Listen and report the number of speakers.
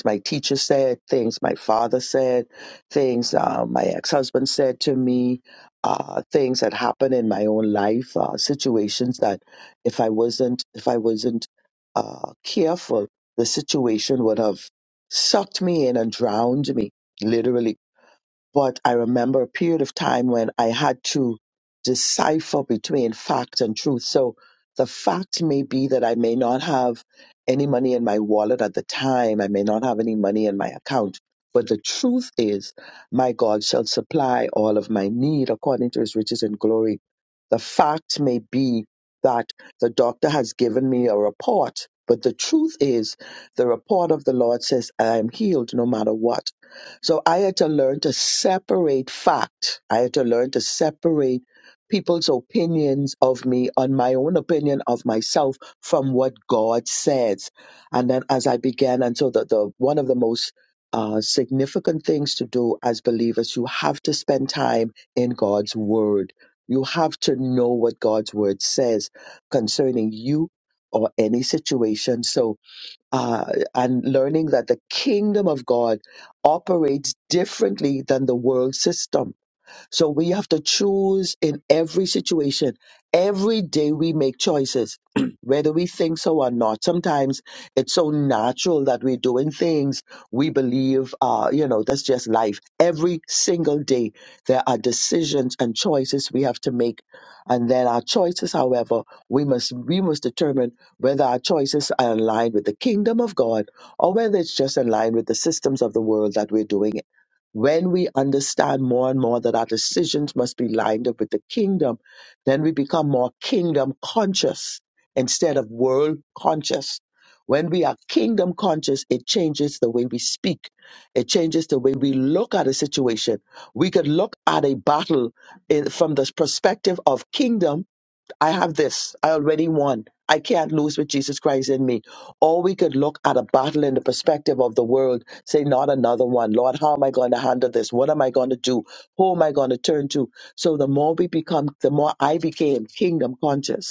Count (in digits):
1